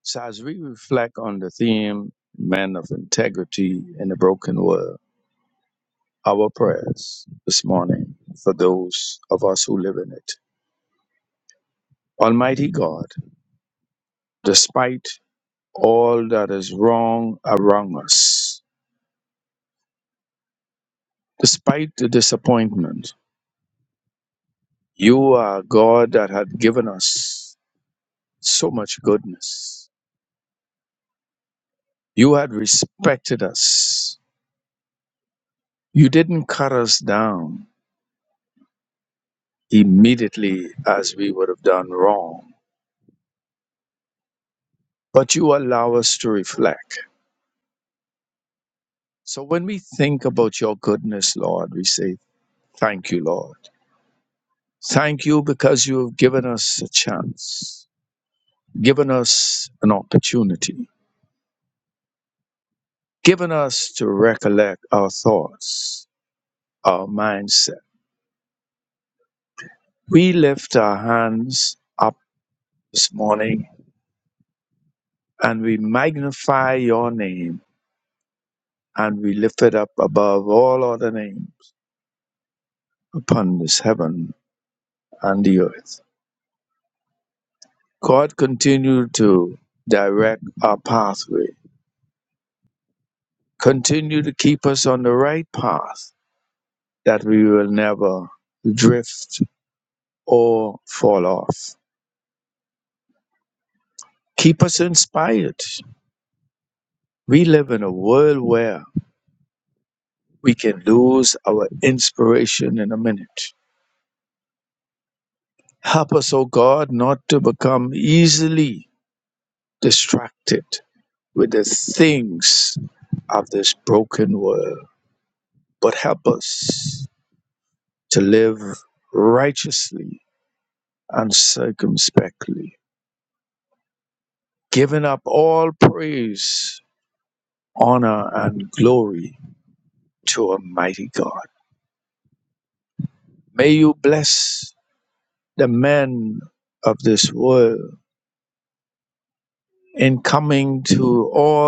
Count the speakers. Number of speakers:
1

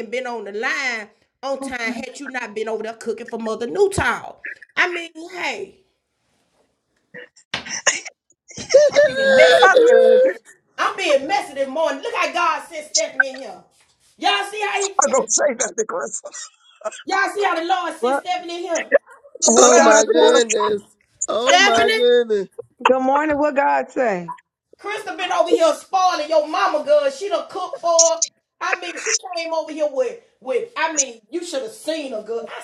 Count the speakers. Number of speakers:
4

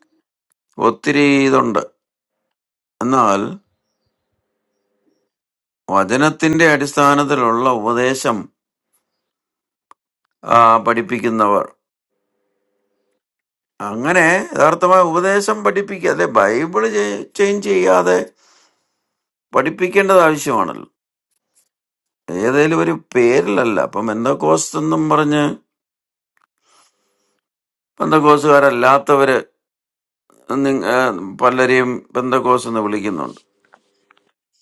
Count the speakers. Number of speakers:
1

